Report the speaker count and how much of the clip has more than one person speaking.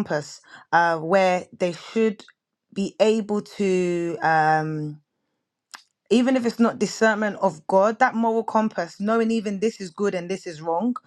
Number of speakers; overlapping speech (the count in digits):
1, no overlap